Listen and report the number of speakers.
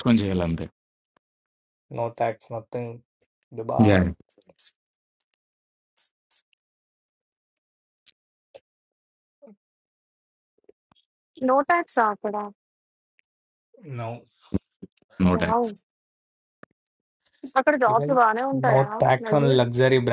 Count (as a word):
three